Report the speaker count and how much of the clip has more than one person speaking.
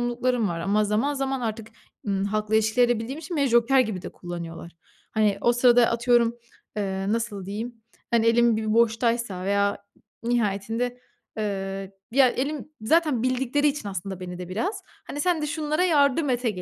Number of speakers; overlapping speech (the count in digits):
1, no overlap